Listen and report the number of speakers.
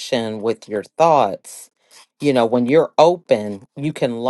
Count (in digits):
1